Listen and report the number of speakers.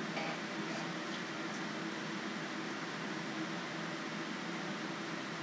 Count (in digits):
0